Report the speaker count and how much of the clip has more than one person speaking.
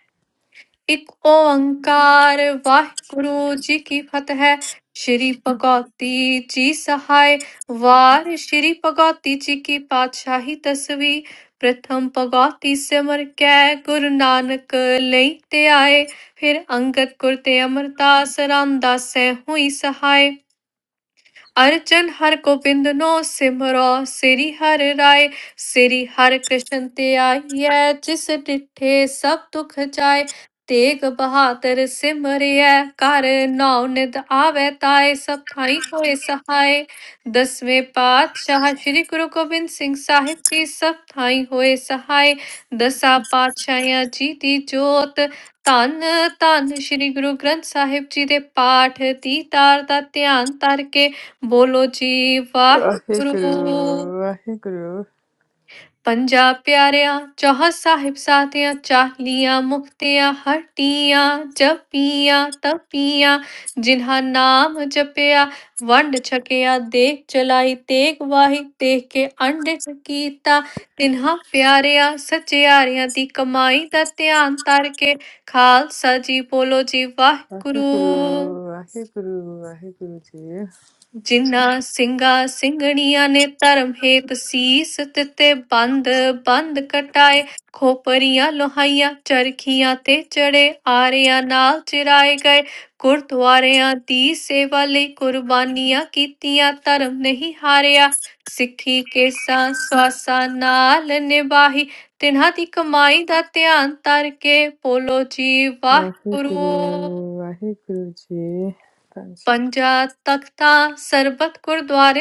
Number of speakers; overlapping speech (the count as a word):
two, about 2%